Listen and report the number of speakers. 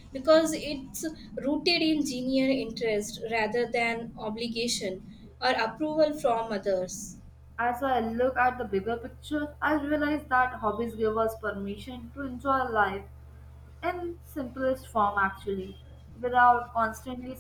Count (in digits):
2